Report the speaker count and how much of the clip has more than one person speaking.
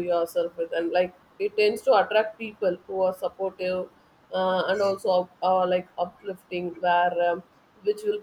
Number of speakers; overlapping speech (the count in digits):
1, no overlap